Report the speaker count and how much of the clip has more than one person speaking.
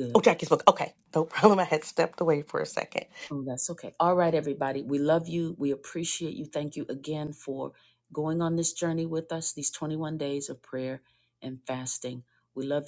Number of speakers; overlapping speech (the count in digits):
2, under 1%